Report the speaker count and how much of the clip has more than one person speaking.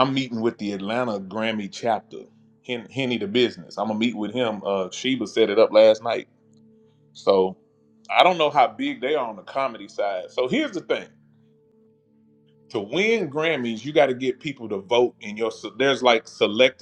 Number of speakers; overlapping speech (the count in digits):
1, no overlap